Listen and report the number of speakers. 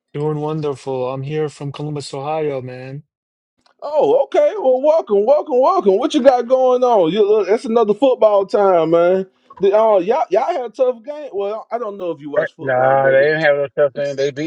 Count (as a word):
three